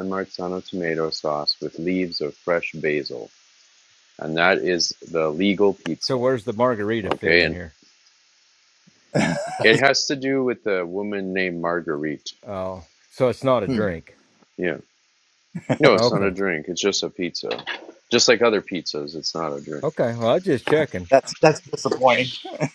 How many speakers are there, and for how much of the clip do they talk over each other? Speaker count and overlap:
3, about 5%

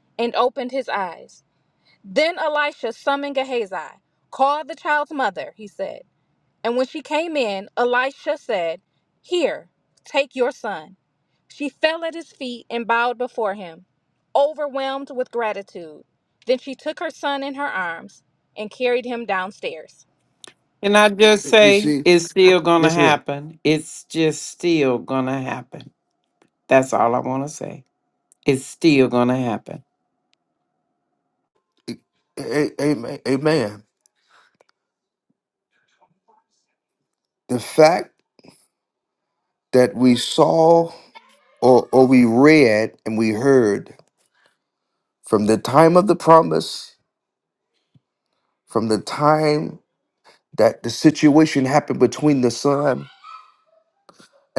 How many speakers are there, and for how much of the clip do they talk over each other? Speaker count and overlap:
3, about 1%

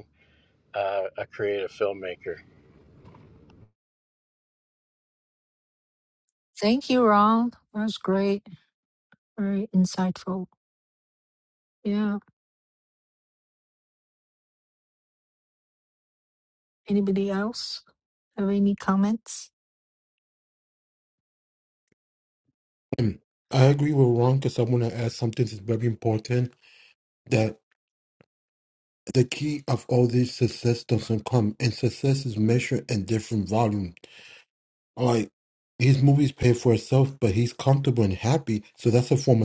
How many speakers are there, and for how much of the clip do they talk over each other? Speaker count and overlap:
3, no overlap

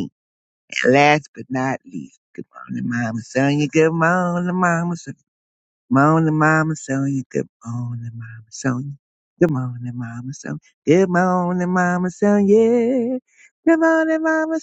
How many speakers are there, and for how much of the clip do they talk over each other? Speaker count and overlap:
1, no overlap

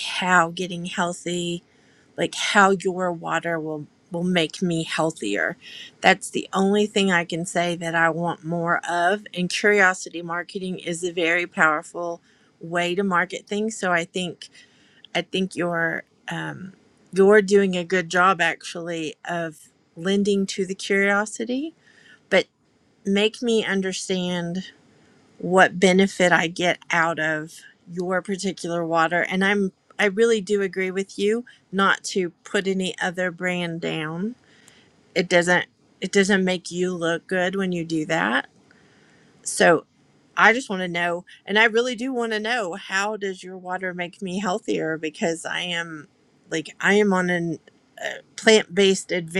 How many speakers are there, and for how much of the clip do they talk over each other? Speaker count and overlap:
1, no overlap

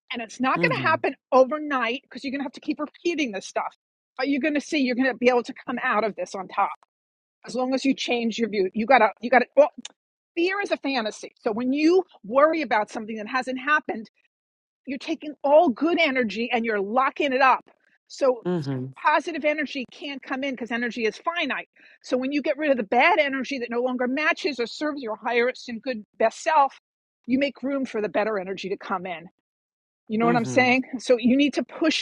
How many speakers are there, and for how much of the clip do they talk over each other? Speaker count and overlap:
2, about 3%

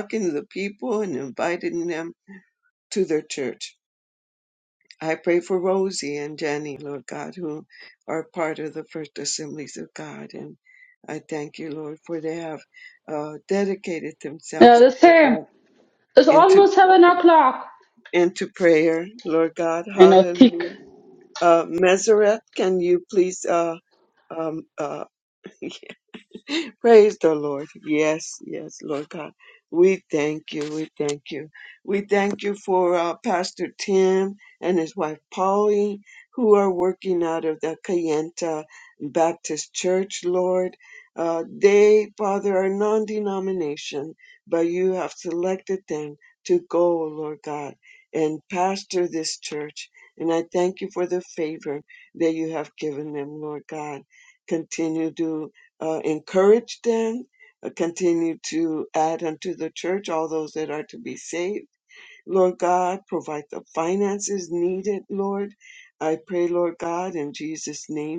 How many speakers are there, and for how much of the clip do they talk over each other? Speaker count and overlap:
2, about 2%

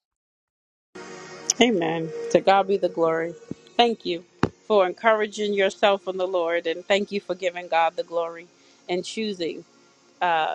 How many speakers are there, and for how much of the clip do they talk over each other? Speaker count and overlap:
1, no overlap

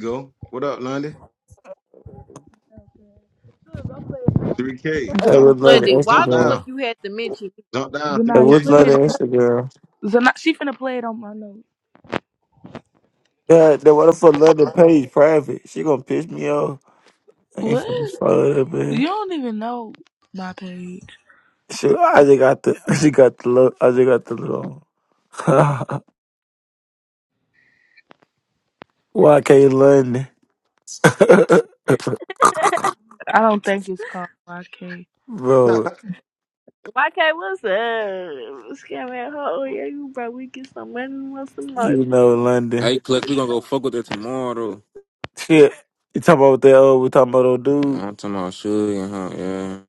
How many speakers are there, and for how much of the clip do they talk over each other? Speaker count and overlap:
5, about 7%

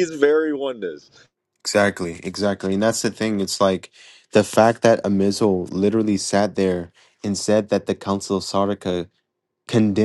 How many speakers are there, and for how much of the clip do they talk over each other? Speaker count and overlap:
2, no overlap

